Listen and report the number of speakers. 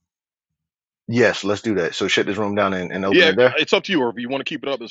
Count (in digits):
2